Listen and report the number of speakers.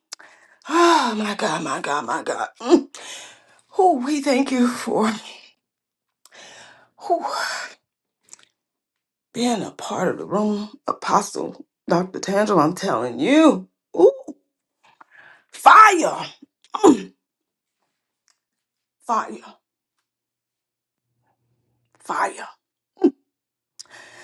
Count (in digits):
1